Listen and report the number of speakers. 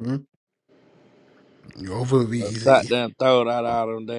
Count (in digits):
2